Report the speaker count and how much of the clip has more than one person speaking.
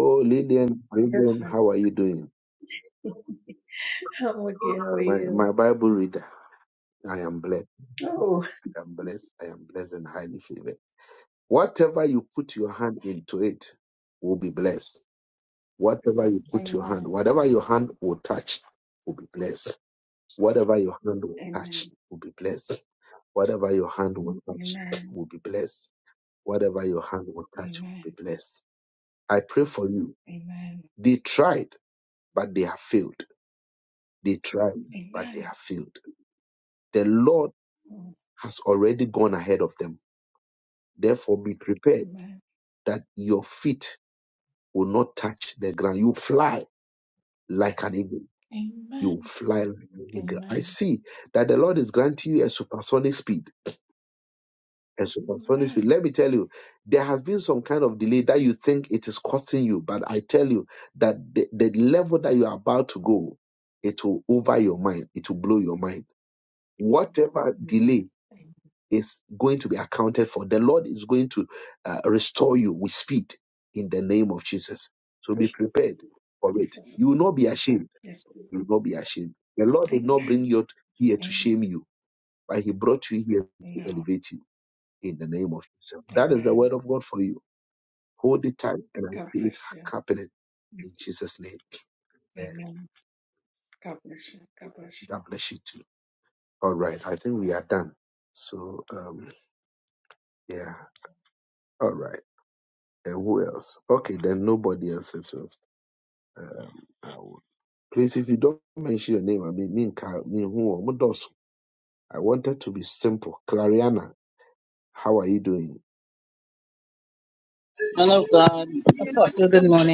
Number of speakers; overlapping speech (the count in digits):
3, about 9%